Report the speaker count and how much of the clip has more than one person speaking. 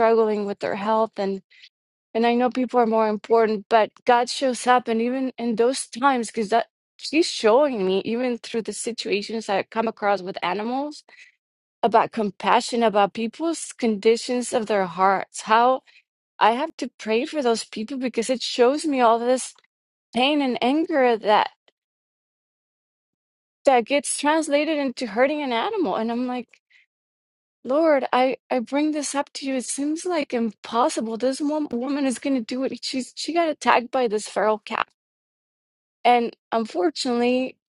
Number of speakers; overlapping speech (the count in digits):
1, no overlap